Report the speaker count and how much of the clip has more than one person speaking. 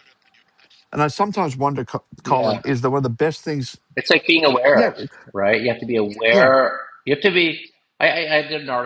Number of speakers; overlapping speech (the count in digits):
2, about 12%